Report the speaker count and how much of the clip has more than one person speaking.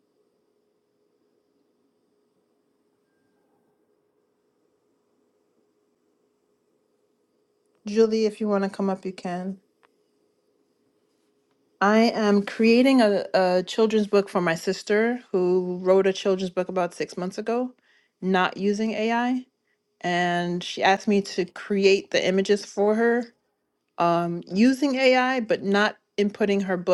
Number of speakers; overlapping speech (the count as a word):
one, no overlap